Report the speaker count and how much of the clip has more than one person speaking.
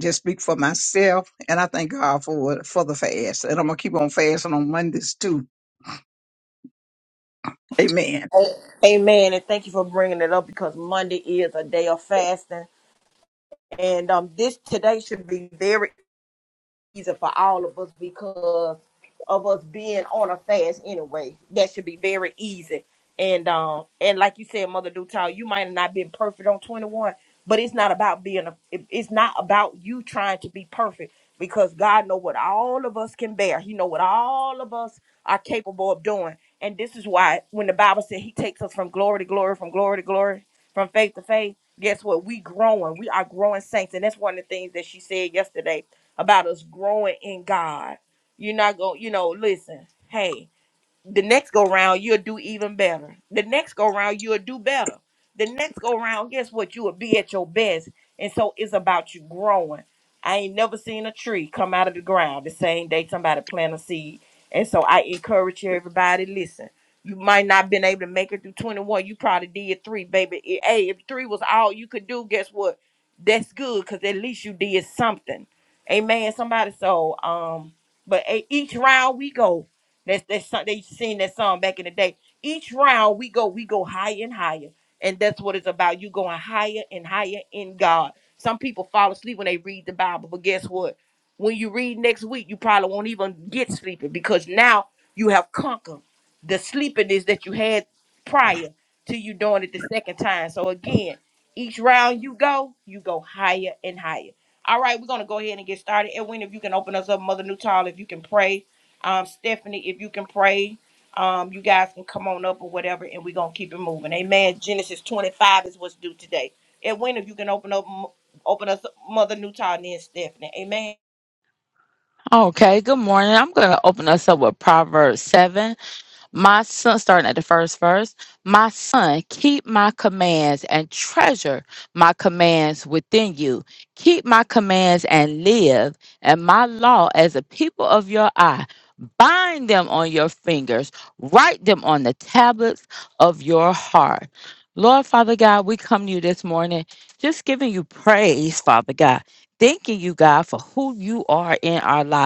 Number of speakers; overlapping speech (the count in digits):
3, no overlap